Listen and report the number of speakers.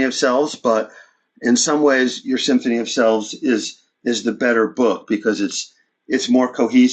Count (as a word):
one